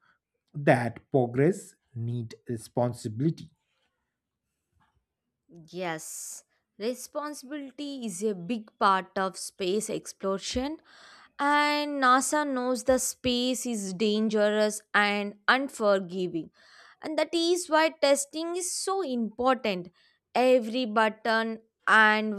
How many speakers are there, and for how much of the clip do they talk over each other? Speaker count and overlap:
2, no overlap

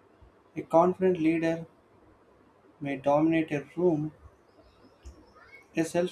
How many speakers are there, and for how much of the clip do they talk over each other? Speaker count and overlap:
1, no overlap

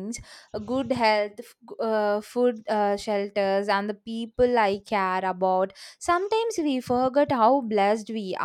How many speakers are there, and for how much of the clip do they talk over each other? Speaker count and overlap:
1, no overlap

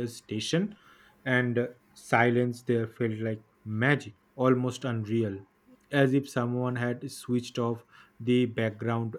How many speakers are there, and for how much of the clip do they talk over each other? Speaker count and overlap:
1, no overlap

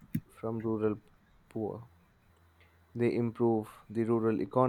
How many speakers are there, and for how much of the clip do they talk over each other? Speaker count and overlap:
1, no overlap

